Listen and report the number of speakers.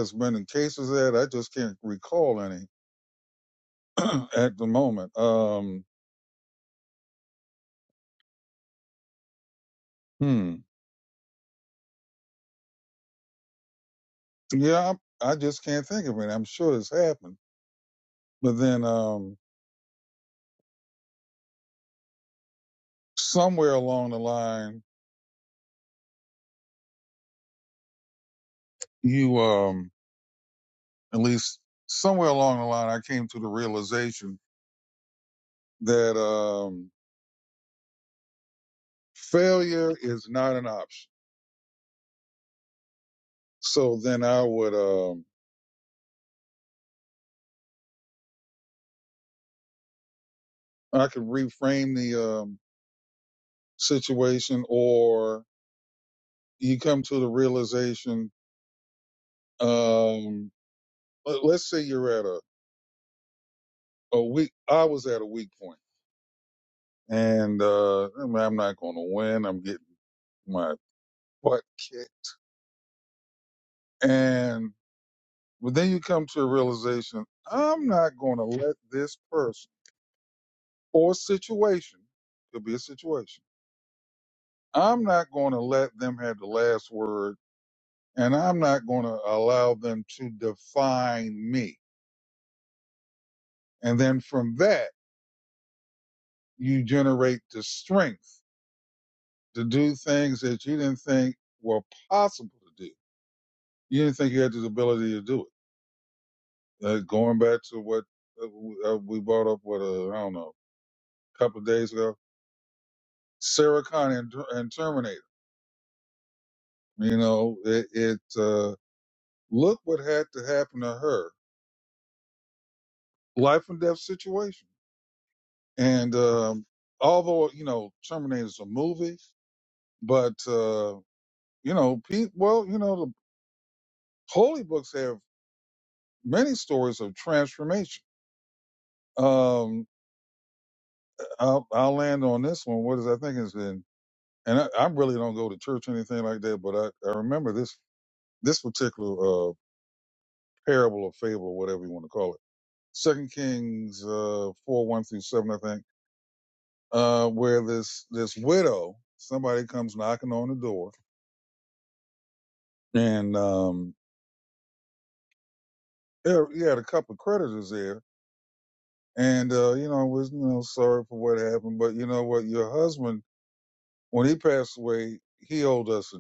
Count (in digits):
1